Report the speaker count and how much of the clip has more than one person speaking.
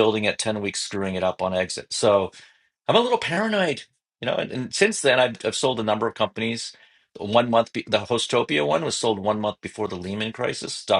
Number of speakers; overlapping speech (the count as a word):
one, no overlap